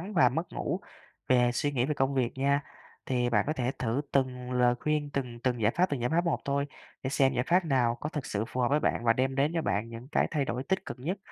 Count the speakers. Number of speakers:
1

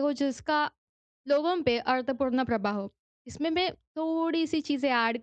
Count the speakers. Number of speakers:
1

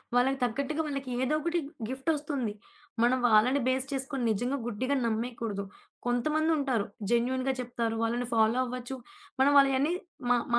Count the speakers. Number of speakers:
1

